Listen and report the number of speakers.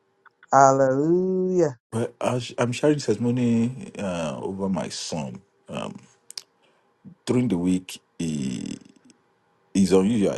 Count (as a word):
two